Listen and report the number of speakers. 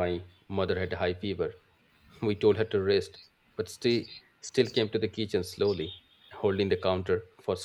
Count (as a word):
one